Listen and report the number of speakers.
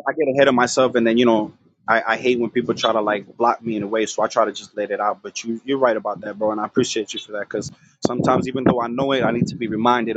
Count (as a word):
one